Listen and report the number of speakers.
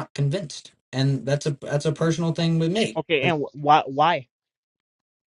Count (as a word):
two